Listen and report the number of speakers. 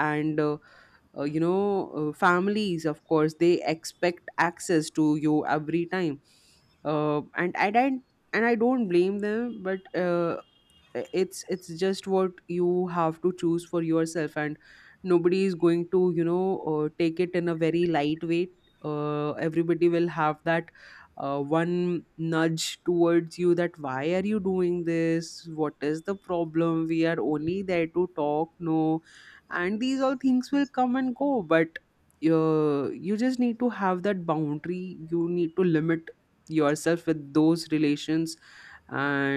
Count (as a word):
one